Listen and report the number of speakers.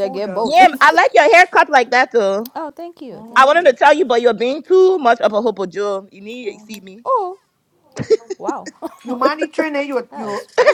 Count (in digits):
3